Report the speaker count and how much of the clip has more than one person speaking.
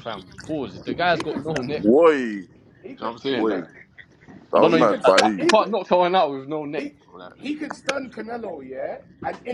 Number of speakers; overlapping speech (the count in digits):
3, about 27%